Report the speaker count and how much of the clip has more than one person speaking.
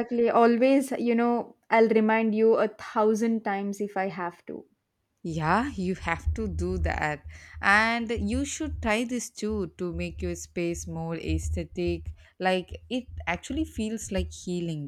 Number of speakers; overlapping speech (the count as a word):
two, no overlap